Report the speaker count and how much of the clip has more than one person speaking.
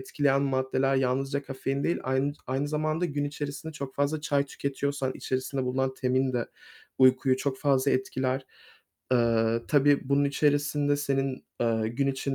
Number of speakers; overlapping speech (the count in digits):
1, no overlap